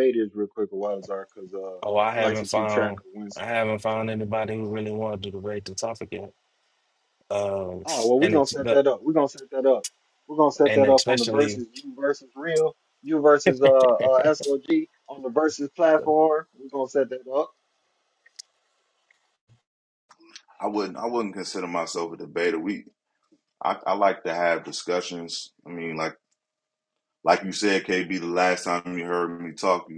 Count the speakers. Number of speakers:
three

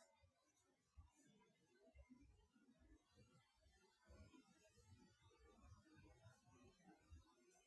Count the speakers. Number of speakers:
zero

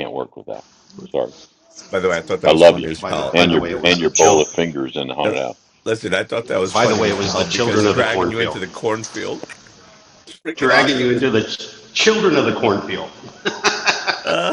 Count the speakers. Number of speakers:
three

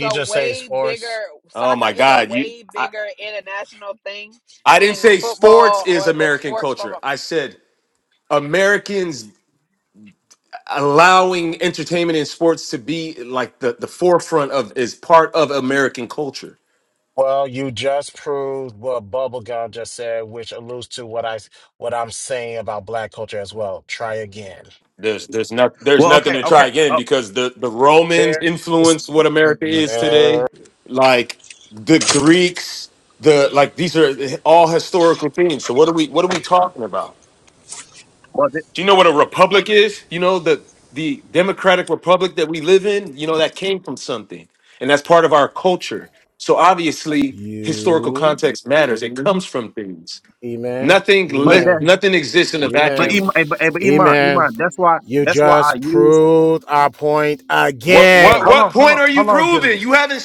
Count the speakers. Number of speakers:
four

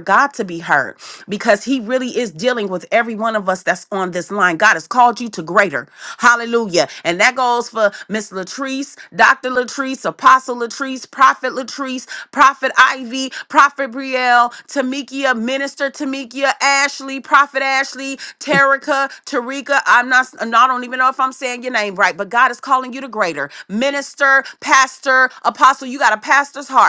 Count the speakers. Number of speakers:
one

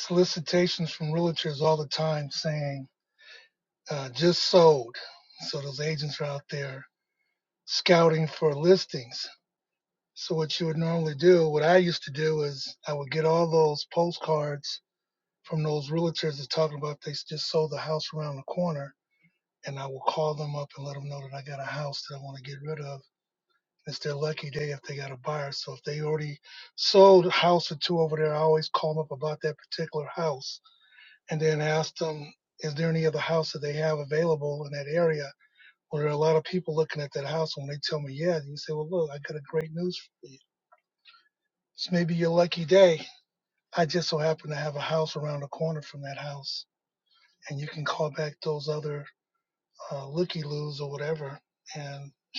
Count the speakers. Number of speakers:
one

